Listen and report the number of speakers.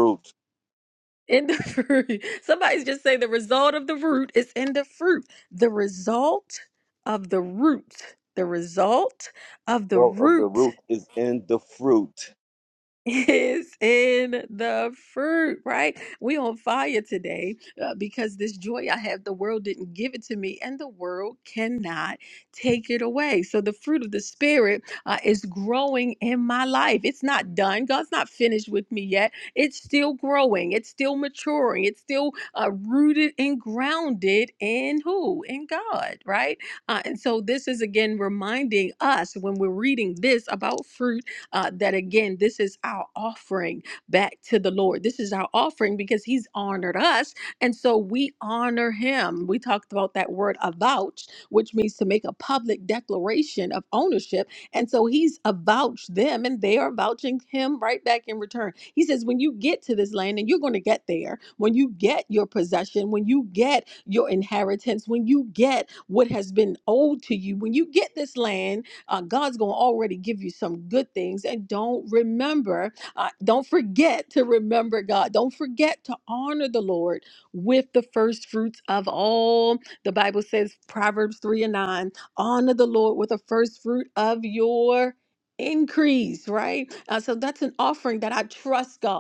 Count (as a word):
two